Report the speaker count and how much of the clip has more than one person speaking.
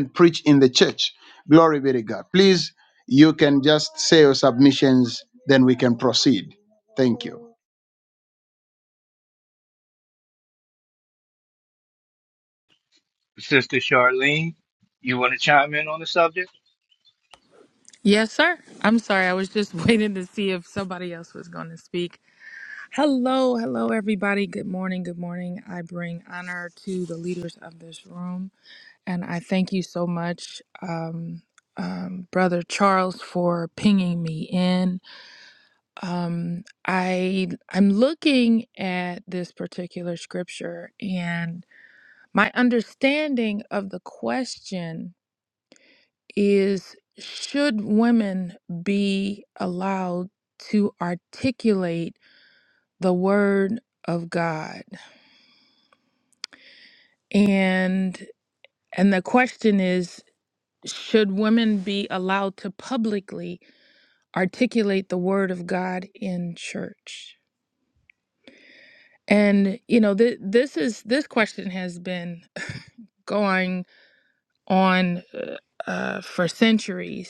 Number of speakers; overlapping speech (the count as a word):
three, no overlap